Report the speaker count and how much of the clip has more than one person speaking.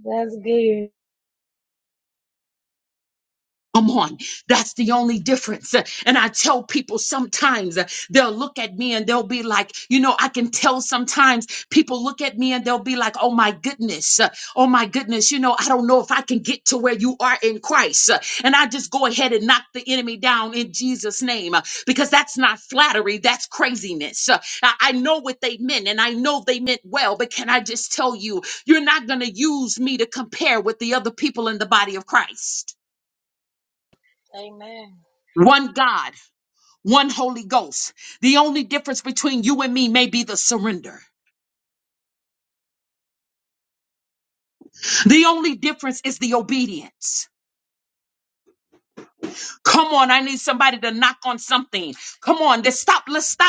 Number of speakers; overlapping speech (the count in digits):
2, no overlap